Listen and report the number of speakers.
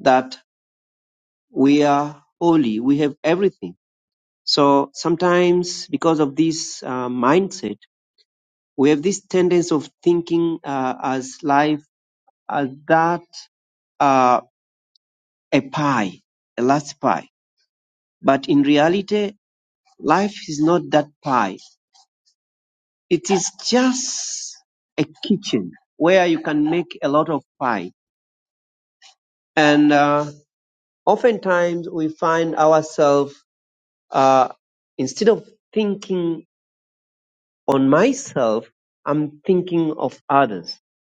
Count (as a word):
one